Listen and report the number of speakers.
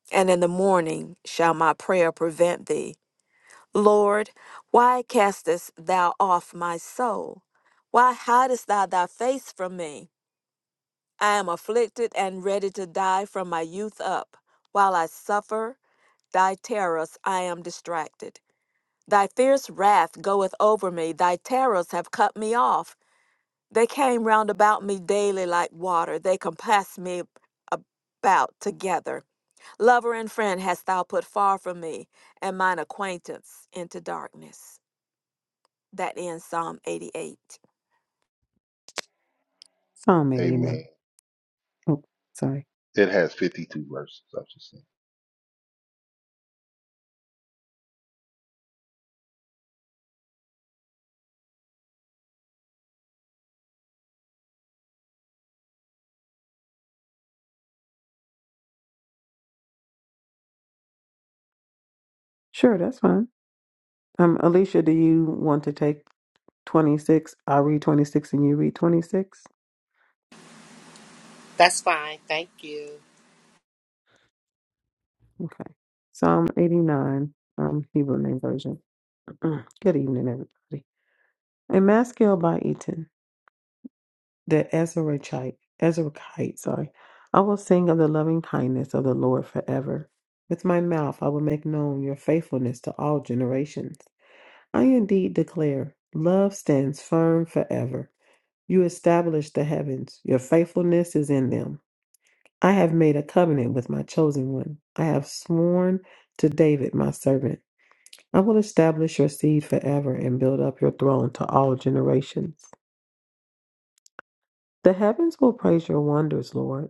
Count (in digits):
4